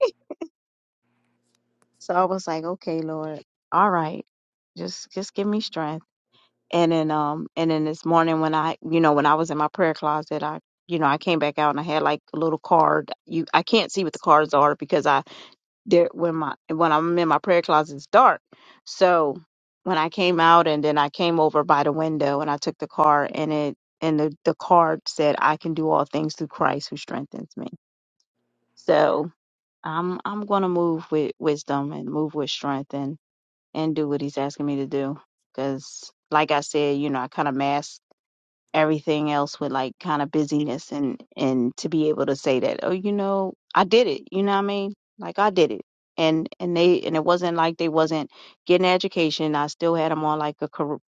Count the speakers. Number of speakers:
1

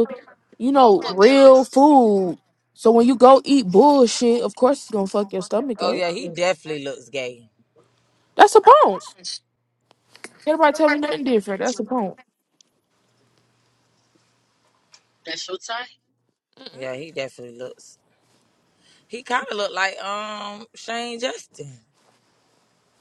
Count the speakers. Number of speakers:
3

